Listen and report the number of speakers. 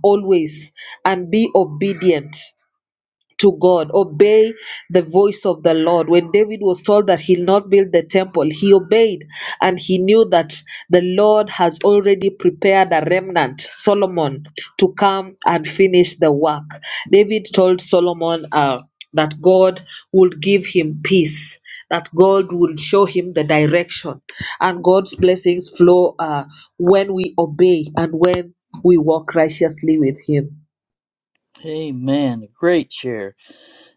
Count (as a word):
two